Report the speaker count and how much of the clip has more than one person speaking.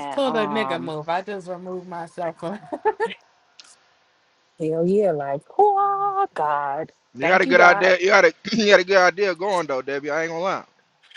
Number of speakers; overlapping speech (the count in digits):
3, about 15%